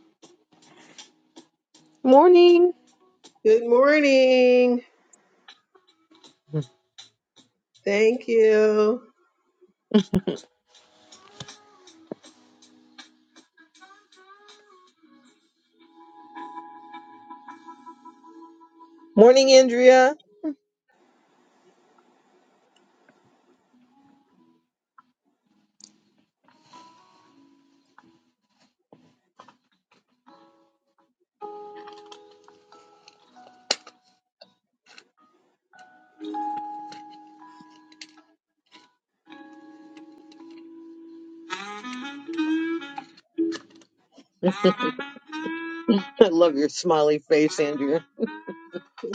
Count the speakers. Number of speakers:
2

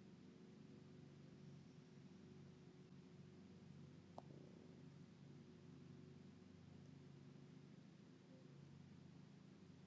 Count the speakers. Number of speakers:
0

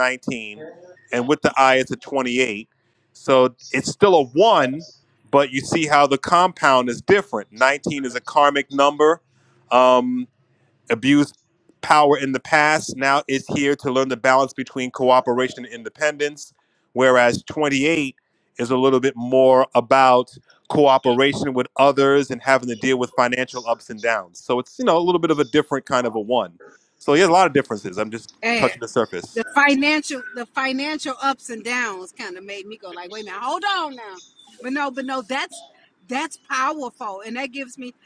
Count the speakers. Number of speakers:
2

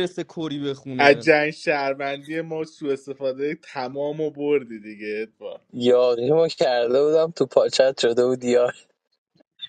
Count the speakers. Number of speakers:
3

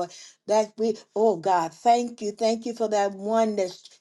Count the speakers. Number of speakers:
1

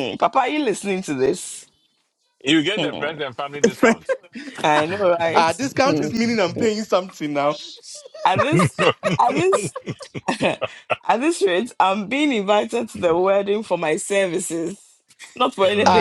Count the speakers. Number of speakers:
3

